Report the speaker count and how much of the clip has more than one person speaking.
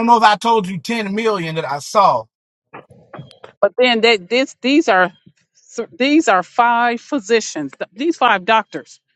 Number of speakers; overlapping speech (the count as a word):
two, no overlap